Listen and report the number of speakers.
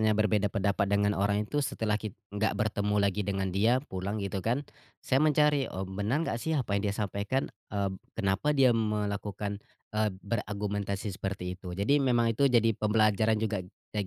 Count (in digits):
1